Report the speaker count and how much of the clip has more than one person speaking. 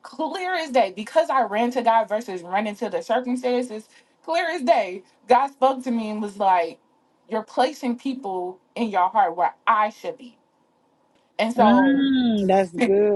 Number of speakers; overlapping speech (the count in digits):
2, about 3%